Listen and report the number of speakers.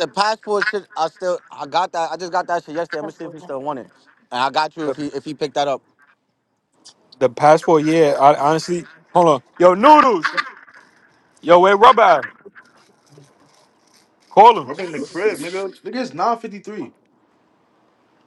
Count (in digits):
3